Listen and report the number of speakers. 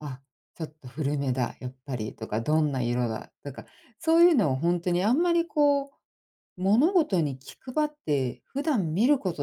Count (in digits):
1